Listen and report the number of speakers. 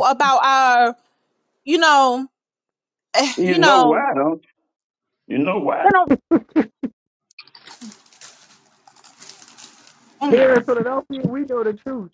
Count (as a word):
three